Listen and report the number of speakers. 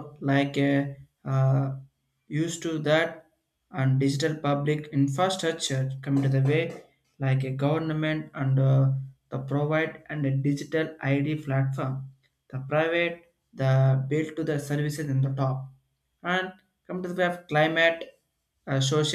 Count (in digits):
1